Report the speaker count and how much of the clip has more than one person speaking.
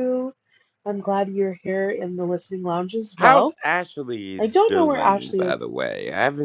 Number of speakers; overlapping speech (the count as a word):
two, about 24%